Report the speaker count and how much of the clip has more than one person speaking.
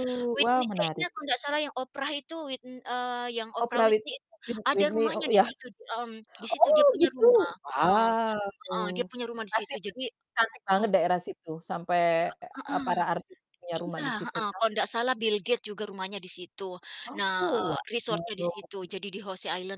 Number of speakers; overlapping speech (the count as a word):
two, about 30%